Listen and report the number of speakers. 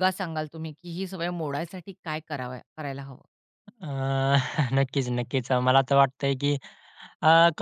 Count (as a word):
two